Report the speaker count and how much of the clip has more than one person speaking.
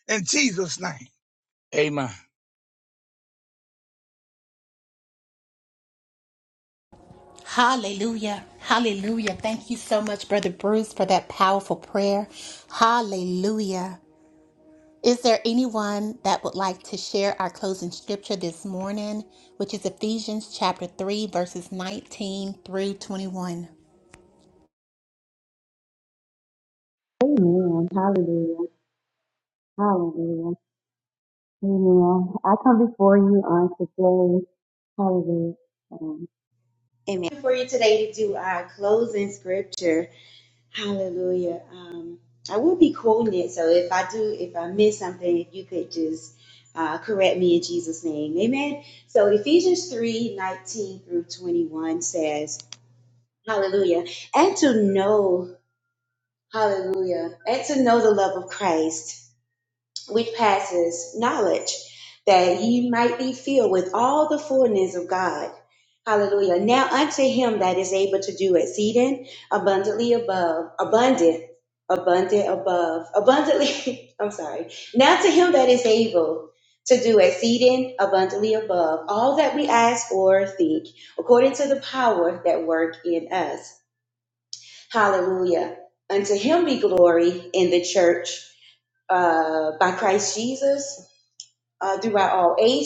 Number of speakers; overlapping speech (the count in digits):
3, no overlap